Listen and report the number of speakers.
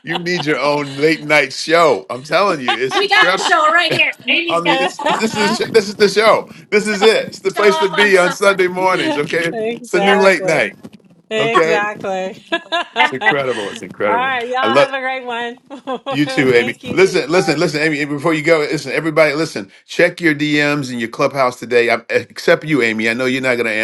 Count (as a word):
three